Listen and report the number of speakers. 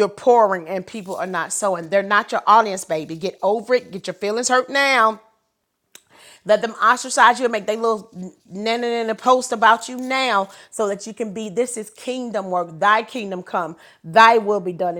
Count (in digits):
1